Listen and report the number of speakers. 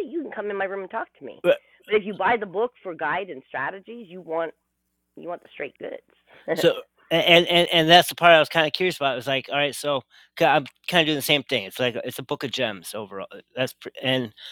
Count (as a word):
two